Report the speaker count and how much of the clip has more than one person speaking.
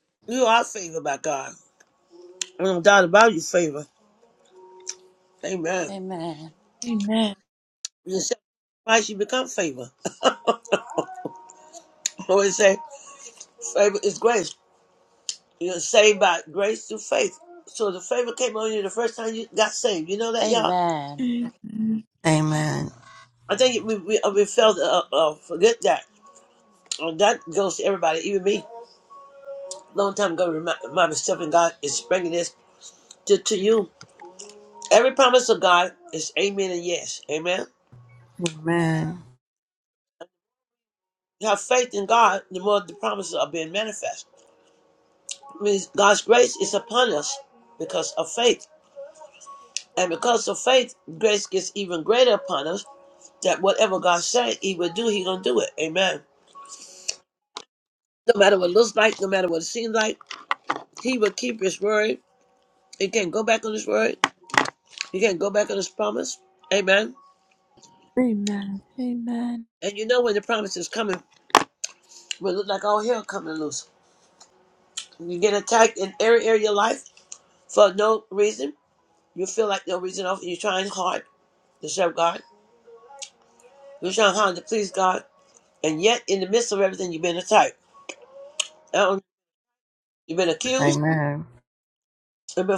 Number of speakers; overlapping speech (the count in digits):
4, about 1%